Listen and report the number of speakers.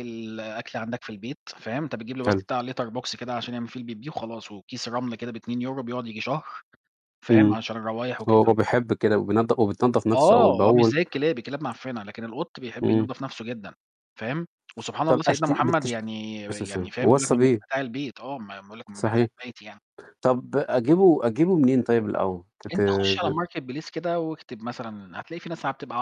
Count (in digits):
2